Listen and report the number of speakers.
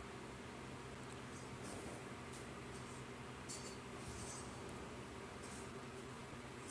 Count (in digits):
0